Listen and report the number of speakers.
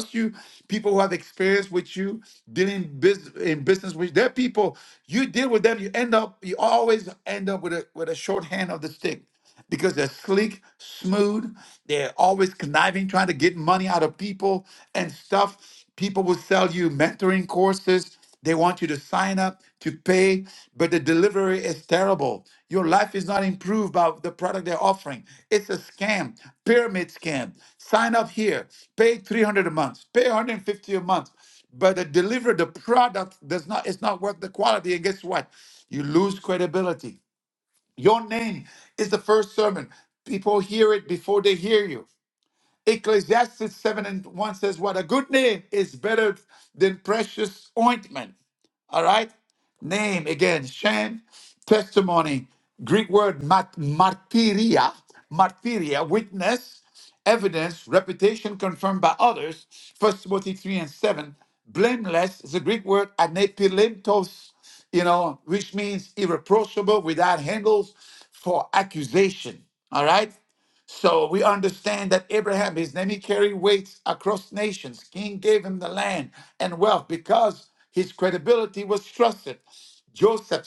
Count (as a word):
one